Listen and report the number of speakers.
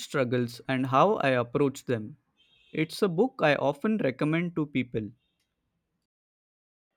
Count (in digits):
1